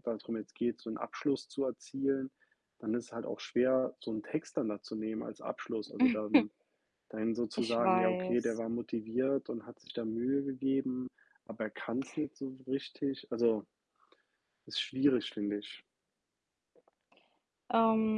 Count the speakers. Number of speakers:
2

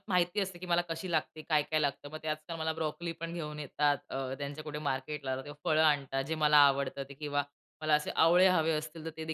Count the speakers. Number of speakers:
1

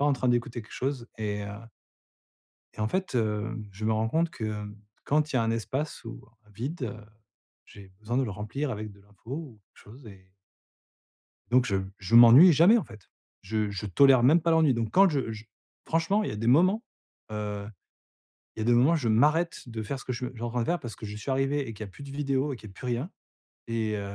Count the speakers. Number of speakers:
1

